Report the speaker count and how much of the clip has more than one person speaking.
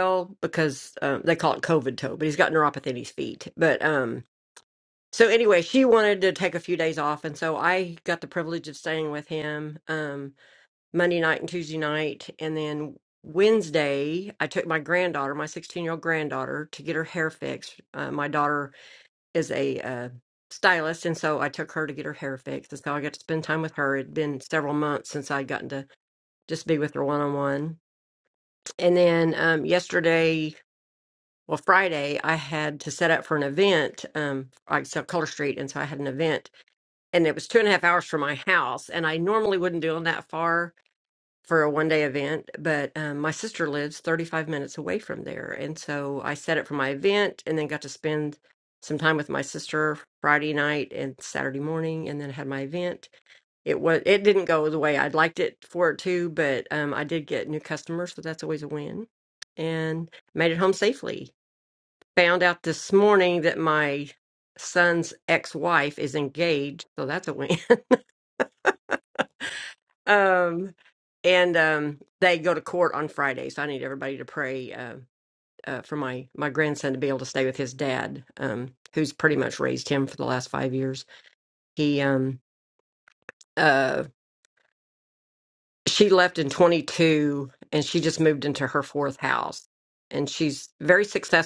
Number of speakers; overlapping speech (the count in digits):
1, no overlap